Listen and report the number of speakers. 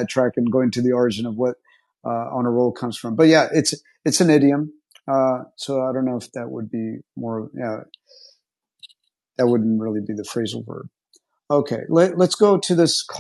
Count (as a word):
one